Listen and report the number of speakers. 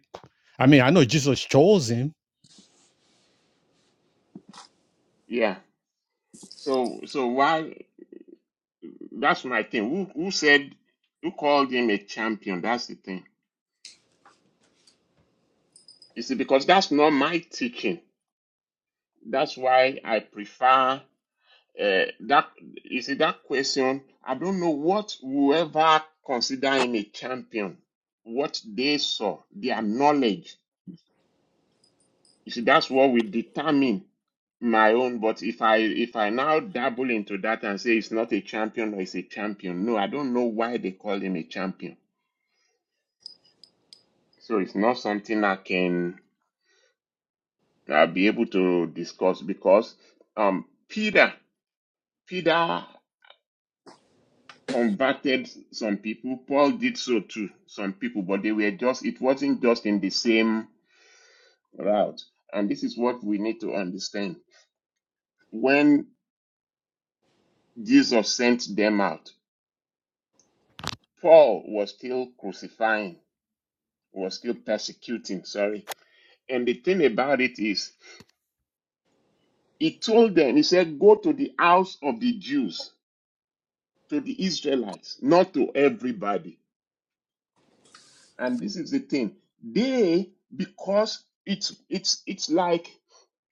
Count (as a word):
two